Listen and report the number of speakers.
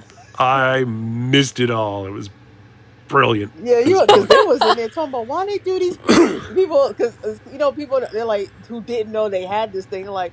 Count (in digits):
2